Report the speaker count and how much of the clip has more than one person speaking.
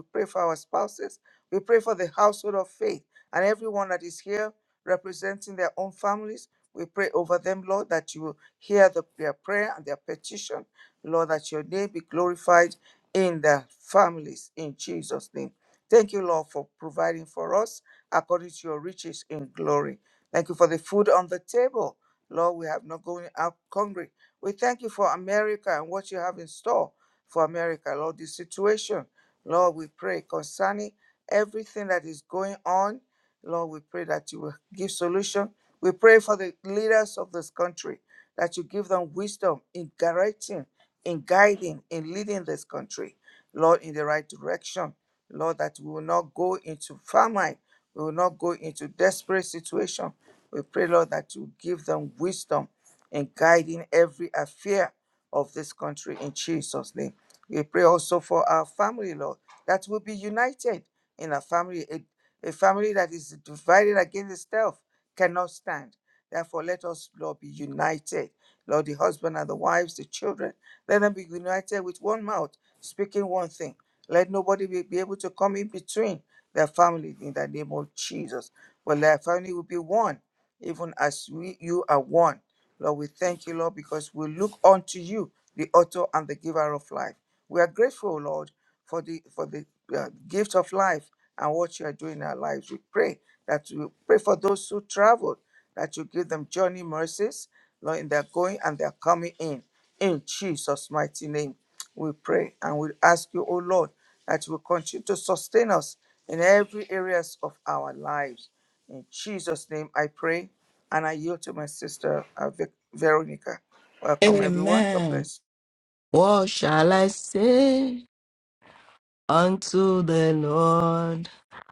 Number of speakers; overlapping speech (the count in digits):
2, about 1%